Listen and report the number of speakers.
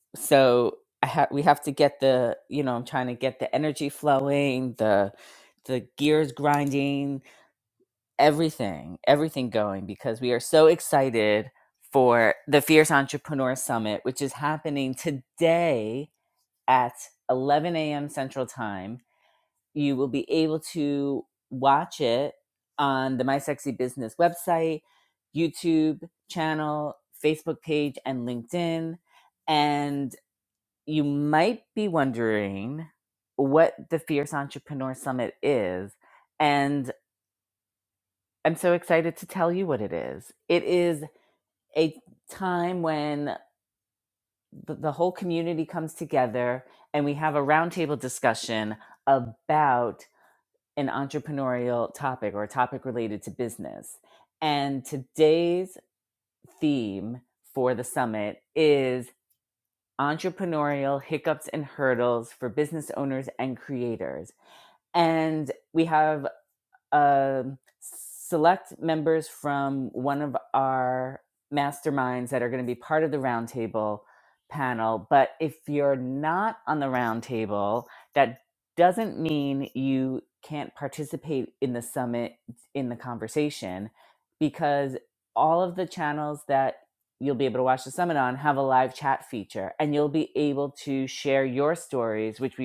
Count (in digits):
1